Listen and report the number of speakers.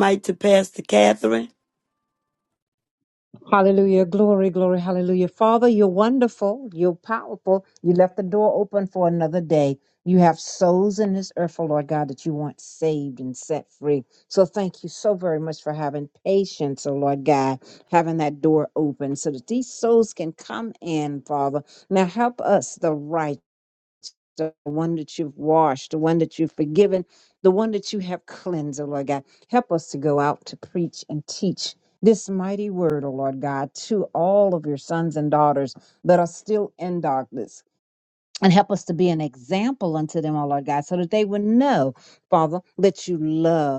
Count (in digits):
2